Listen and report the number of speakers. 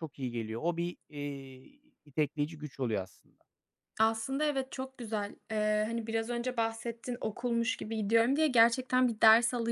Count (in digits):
2